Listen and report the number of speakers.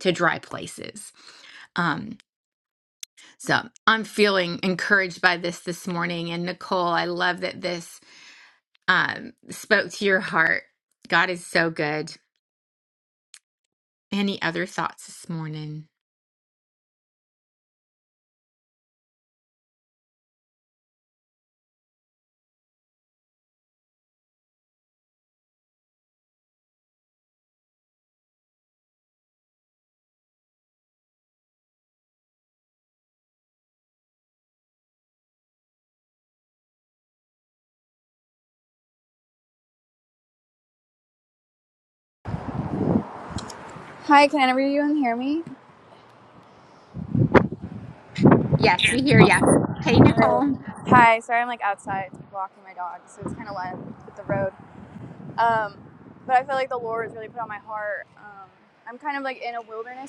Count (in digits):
2